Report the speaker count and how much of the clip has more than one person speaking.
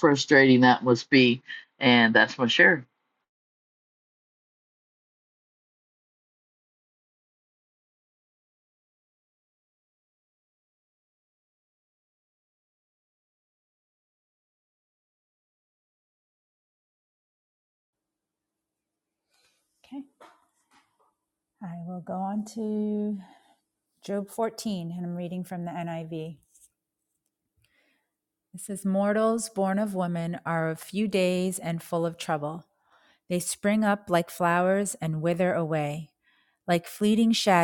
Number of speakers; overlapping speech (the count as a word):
two, no overlap